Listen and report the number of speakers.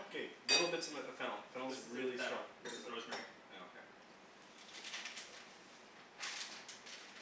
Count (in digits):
2